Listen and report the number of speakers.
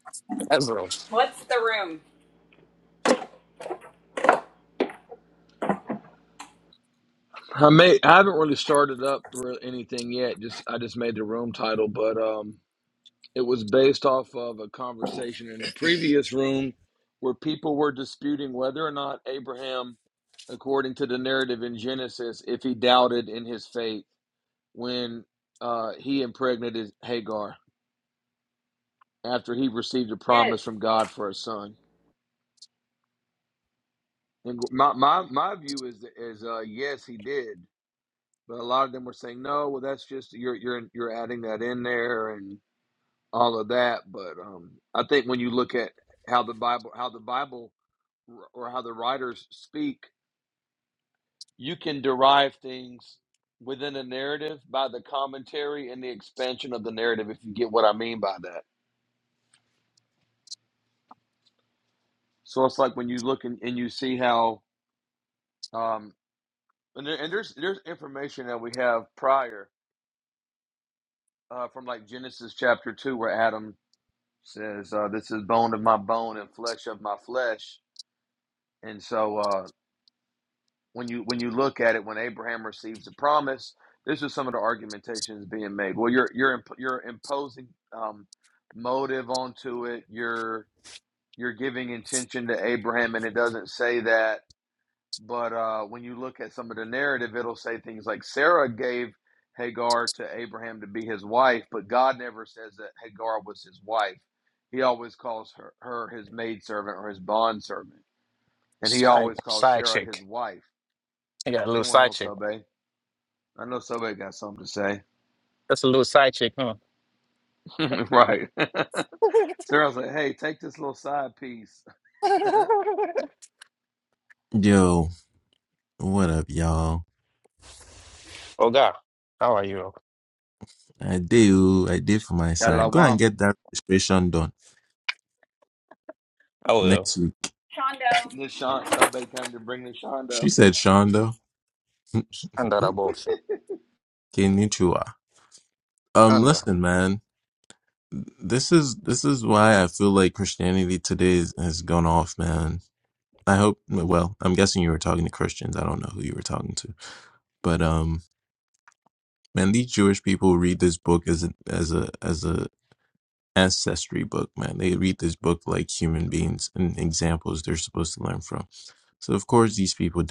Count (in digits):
4